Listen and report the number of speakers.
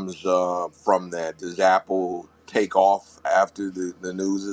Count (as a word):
one